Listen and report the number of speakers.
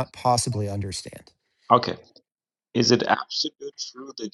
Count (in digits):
2